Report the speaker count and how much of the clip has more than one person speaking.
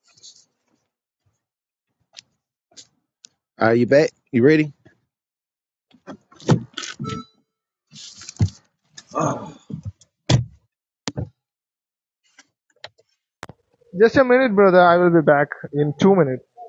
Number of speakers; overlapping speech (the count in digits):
2, no overlap